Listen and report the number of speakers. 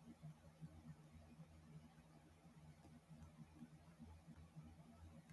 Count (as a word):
zero